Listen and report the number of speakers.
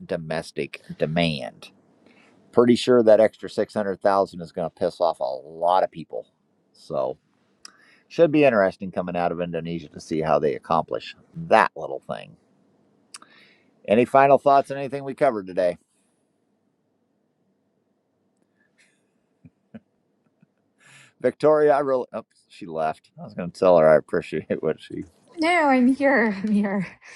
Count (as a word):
two